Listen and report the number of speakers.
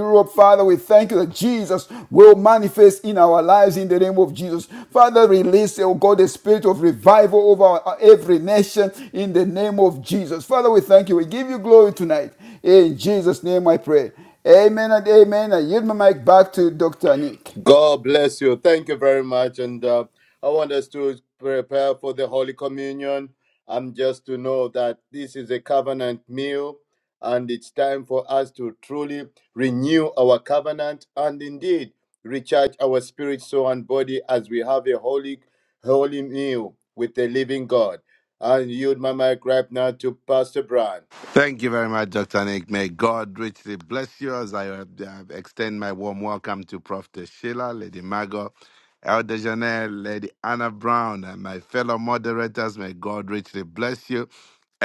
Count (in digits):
3